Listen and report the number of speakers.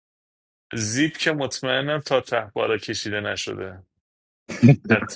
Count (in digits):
1